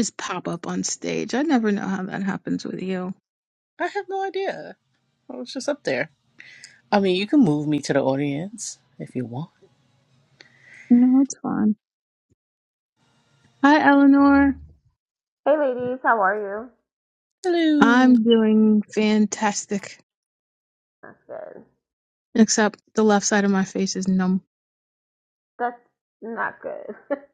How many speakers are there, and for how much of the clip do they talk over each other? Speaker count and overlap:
3, about 1%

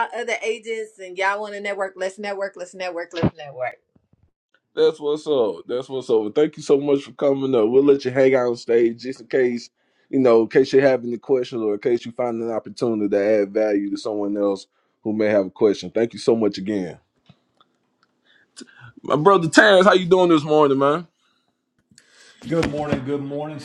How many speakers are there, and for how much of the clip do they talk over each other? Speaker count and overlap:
3, no overlap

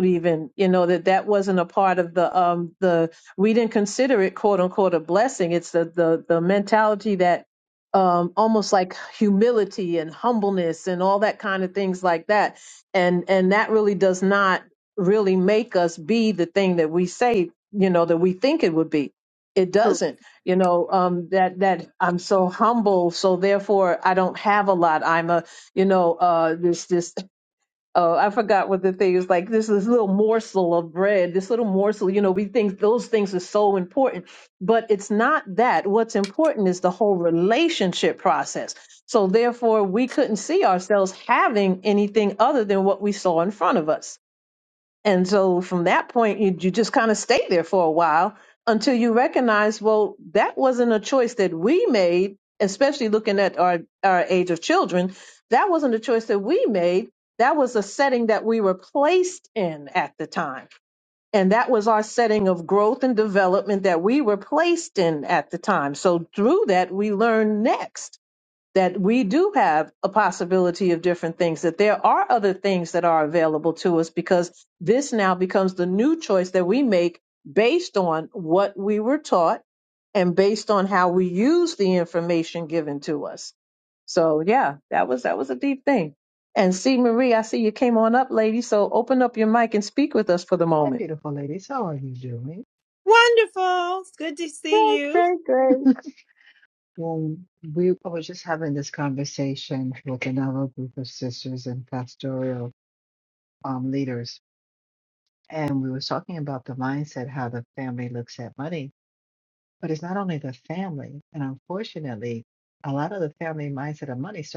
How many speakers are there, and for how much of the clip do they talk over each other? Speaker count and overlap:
3, about 1%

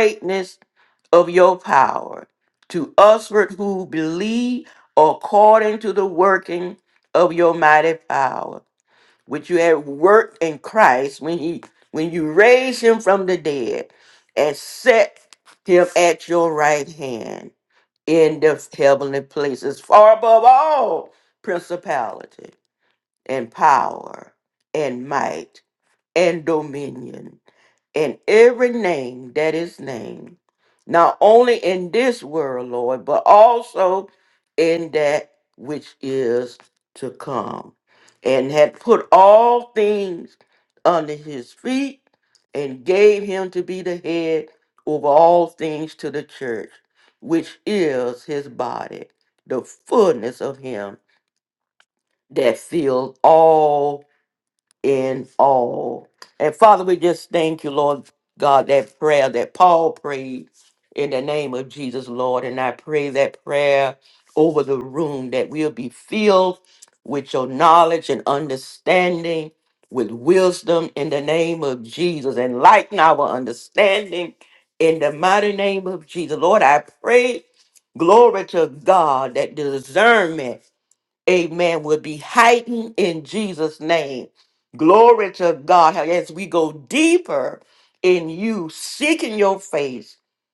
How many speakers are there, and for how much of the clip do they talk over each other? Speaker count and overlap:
1, no overlap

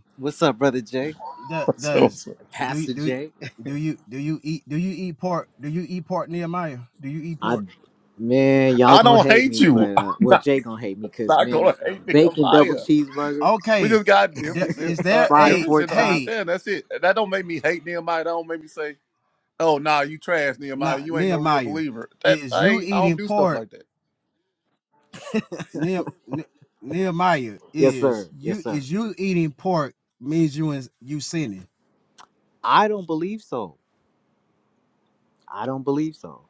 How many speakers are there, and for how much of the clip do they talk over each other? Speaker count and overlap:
3, about 27%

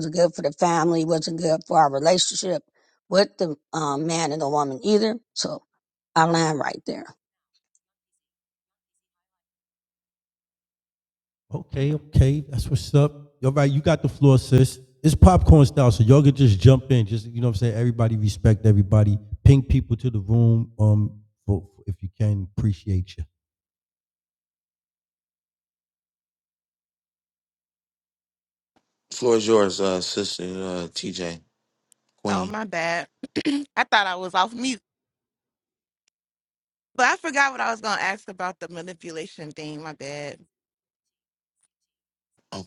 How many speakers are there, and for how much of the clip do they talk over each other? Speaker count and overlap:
4, about 1%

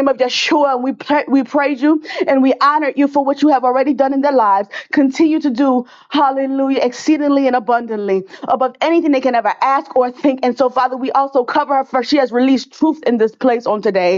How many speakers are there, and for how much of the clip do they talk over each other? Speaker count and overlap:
1, no overlap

